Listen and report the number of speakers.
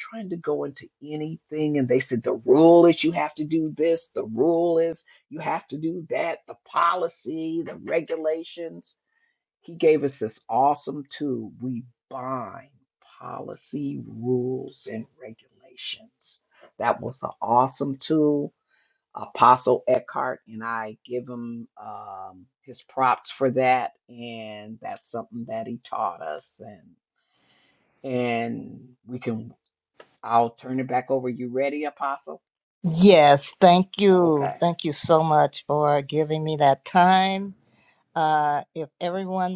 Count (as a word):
two